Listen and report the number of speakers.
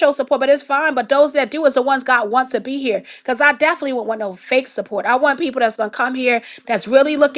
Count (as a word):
one